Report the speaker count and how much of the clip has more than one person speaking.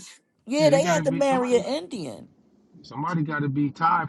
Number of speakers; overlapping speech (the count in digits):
2, about 25%